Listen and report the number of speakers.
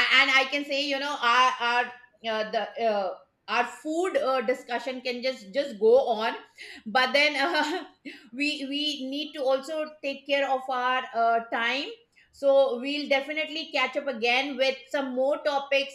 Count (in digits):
1